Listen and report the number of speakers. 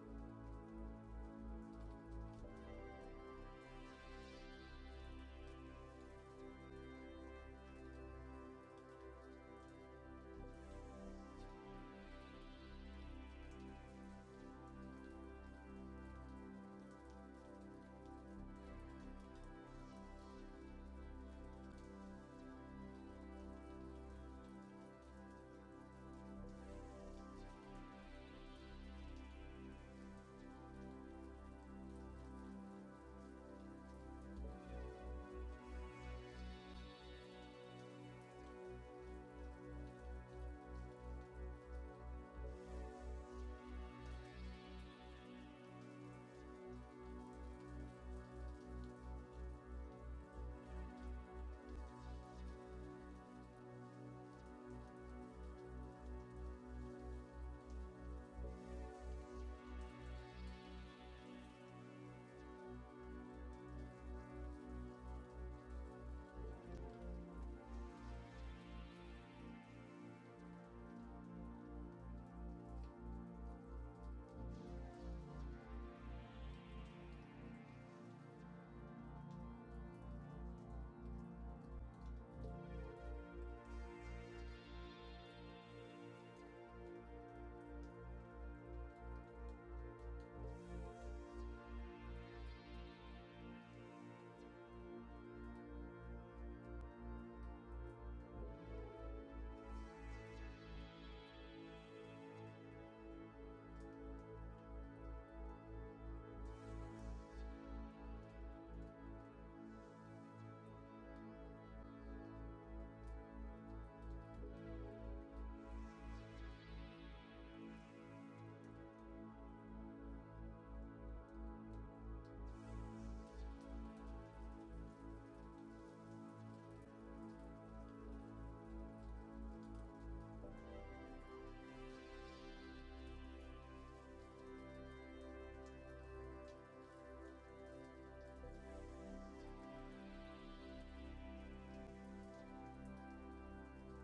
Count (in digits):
0